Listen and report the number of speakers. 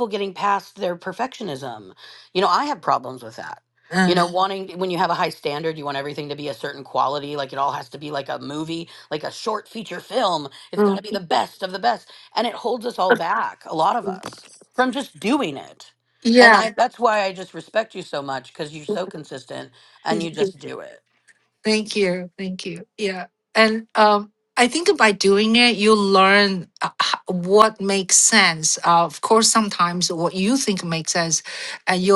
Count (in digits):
2